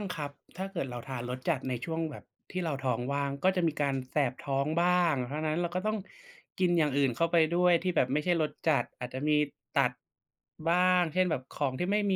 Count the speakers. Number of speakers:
one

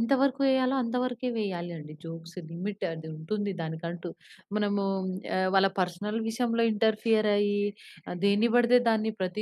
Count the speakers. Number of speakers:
one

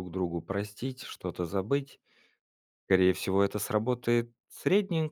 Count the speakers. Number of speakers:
one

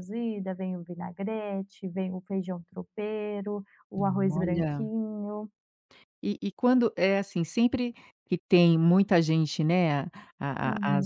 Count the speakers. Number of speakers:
two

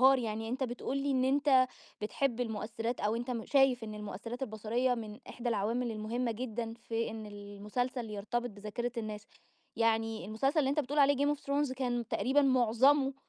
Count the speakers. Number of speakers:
one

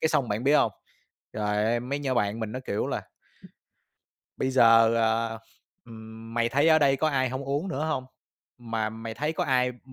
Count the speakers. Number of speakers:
one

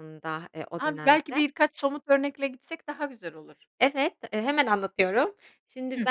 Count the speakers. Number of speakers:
two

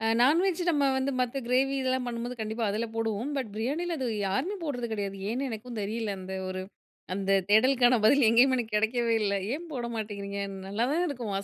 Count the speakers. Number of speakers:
one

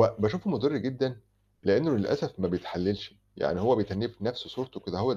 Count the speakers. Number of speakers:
one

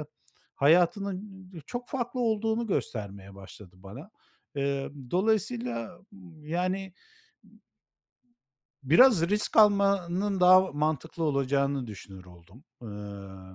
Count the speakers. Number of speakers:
one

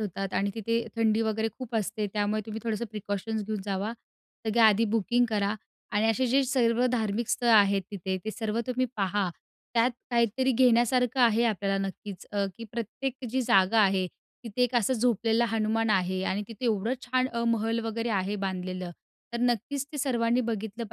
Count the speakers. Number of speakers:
one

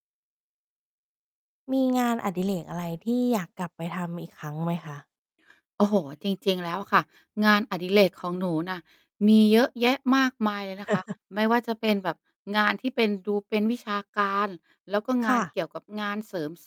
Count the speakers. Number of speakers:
two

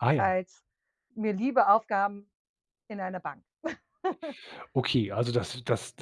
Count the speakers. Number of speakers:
two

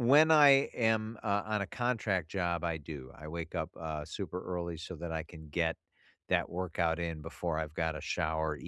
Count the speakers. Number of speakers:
one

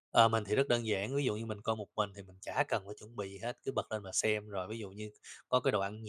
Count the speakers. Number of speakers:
one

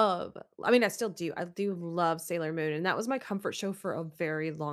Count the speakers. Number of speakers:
one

